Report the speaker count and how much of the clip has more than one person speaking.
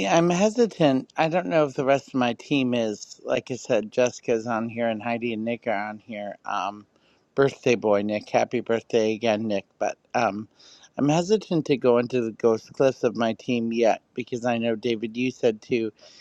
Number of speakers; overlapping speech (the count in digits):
1, no overlap